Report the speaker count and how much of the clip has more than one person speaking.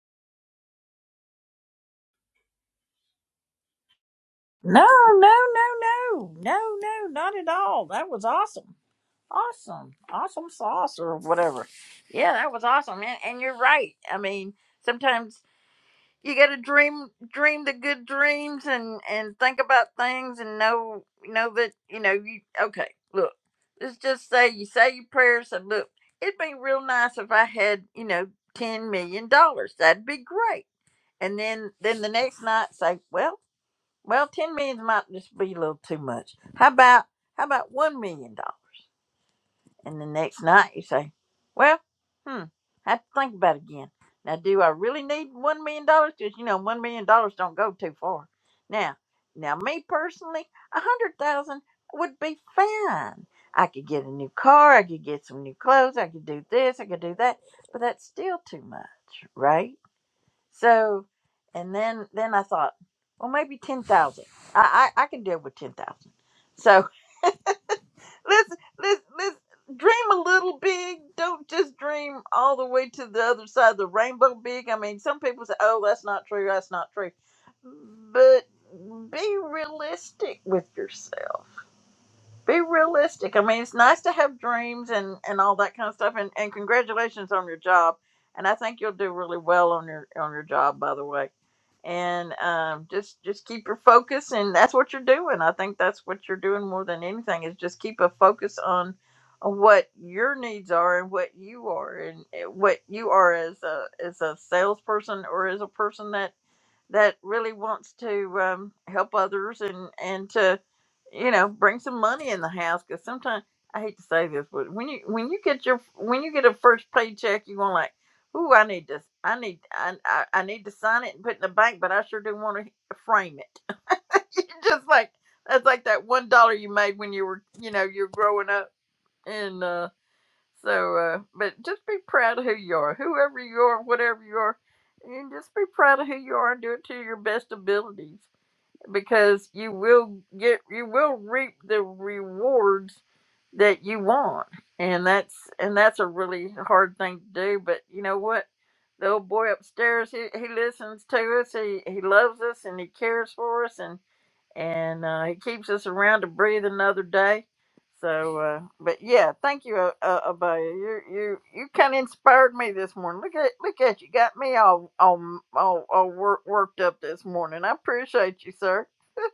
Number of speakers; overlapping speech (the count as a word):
one, no overlap